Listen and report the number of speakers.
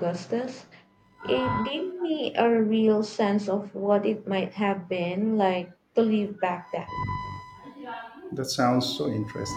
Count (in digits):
2